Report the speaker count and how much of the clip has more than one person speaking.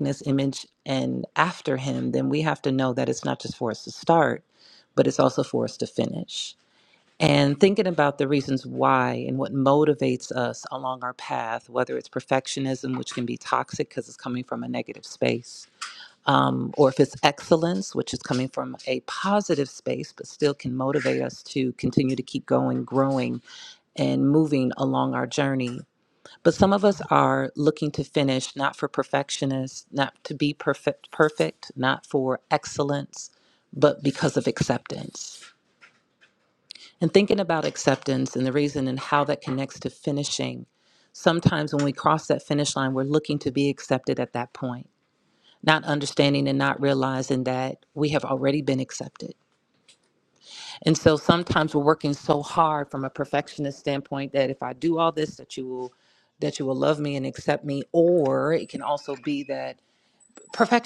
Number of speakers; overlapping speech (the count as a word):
one, no overlap